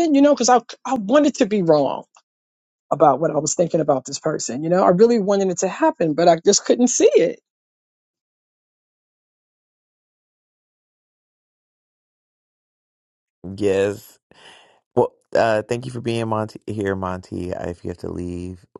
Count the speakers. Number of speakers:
2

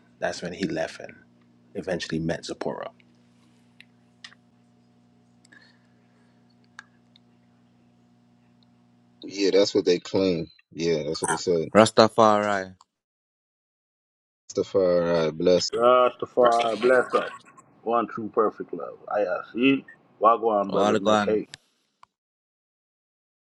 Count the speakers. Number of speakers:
4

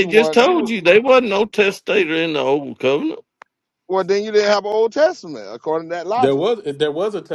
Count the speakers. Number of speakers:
3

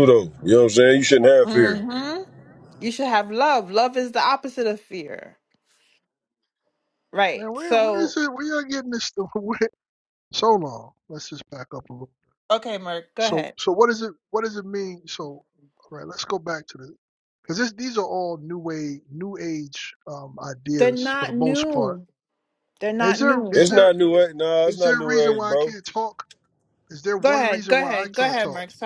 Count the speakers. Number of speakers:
3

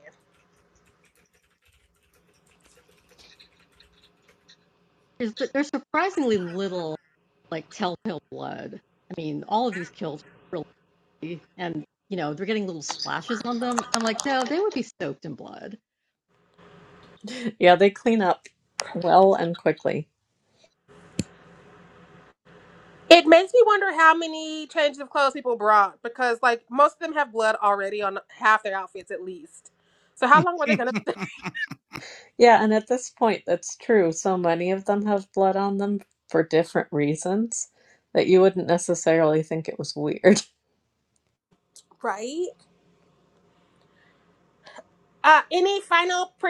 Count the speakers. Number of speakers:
3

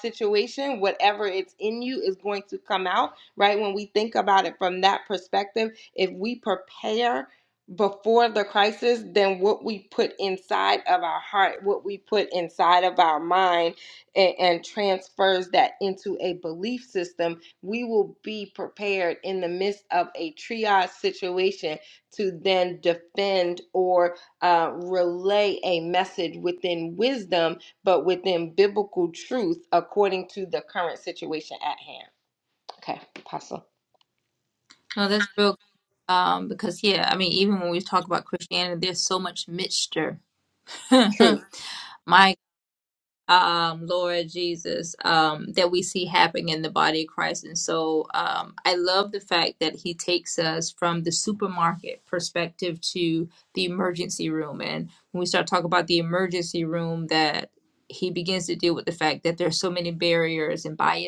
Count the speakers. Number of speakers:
2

